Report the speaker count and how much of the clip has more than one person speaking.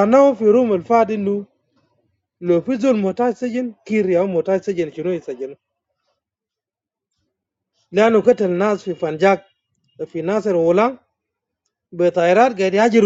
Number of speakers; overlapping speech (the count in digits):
1, no overlap